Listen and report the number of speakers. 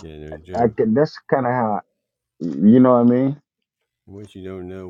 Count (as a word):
two